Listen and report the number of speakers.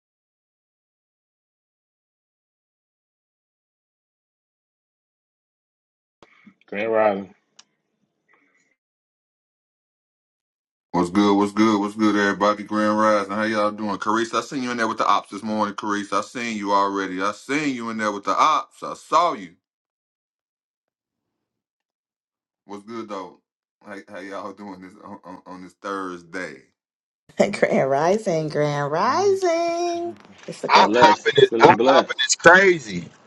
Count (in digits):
4